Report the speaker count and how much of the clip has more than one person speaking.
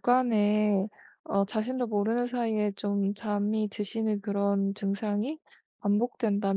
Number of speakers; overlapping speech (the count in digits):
1, no overlap